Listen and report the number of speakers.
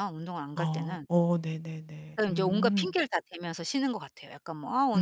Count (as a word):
two